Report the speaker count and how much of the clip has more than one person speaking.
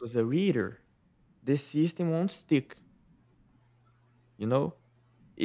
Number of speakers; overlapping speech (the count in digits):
1, no overlap